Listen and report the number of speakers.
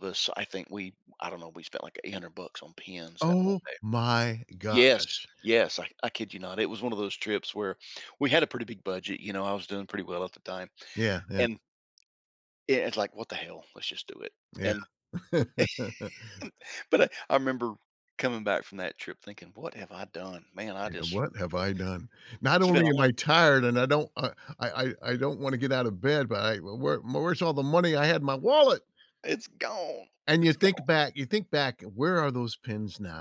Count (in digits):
2